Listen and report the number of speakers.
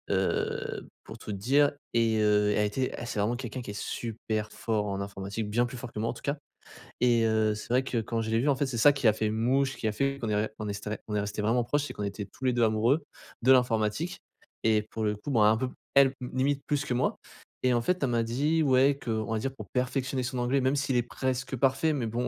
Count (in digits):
1